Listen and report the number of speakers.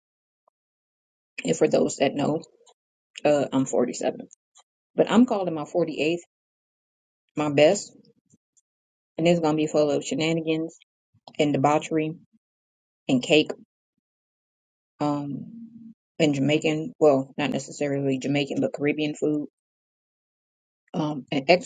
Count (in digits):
1